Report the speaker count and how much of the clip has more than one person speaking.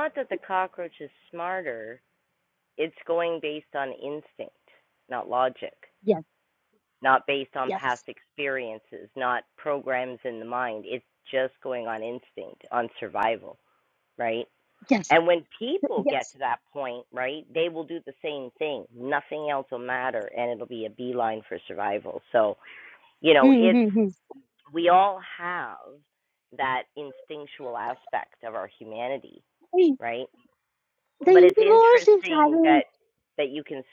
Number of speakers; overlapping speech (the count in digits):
2, about 6%